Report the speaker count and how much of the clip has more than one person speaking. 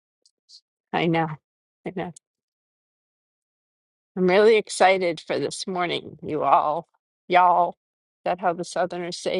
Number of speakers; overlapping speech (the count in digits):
1, no overlap